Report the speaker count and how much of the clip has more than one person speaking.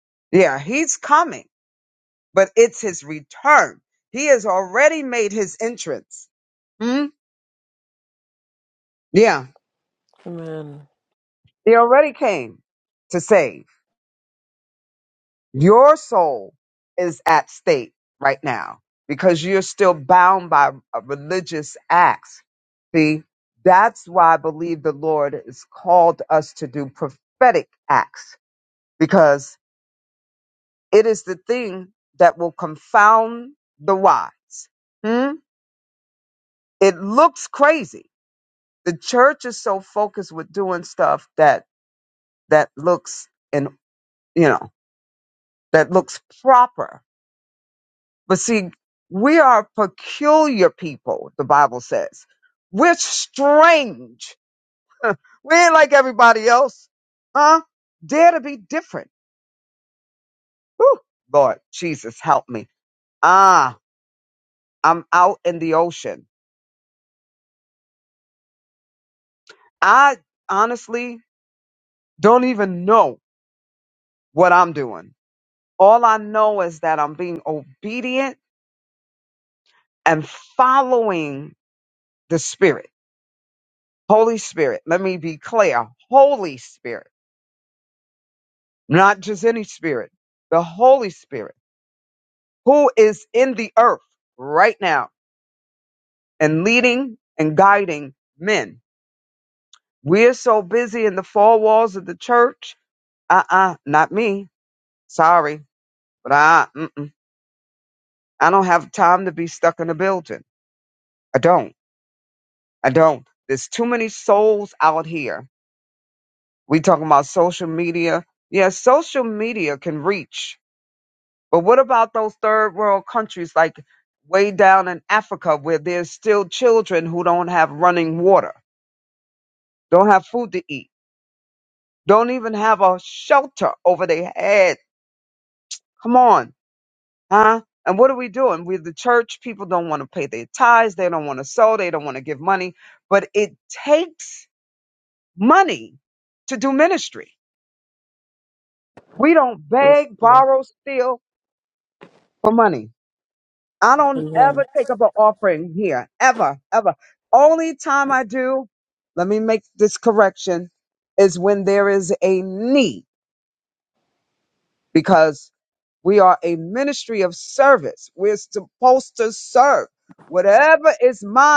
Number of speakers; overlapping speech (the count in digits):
2, about 1%